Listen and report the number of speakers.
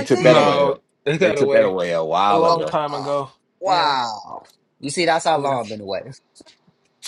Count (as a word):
three